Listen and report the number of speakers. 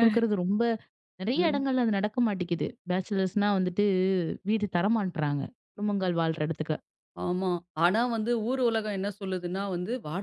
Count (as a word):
two